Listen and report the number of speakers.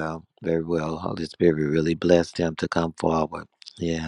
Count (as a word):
one